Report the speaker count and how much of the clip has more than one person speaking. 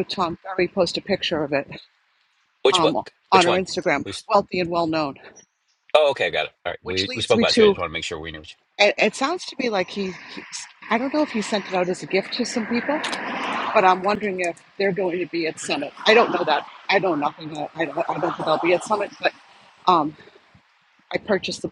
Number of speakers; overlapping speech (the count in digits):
2, about 7%